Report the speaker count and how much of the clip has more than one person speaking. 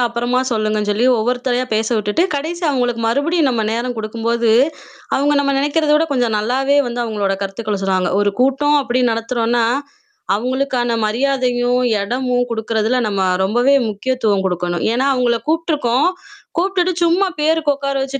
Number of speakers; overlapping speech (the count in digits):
1, no overlap